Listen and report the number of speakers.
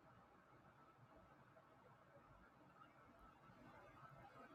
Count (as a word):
zero